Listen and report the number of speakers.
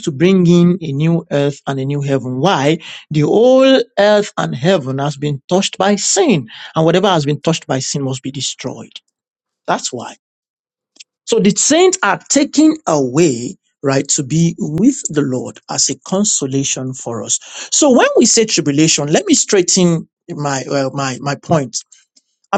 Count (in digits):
1